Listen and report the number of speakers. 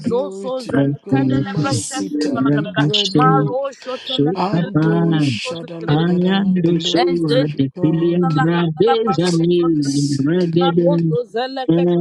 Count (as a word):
three